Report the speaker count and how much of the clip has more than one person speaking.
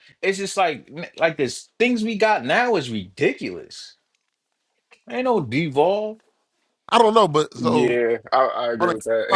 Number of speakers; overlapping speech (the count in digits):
3, about 7%